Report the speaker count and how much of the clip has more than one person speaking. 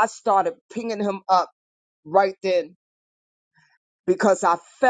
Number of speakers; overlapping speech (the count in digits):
1, no overlap